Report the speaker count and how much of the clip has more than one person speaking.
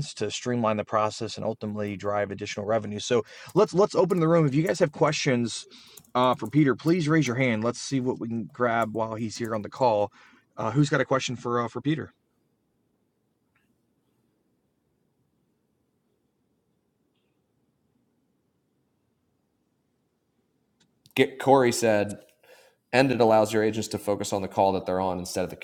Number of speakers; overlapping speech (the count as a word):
two, no overlap